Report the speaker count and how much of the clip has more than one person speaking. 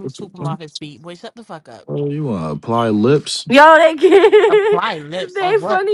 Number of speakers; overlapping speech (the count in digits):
3, about 24%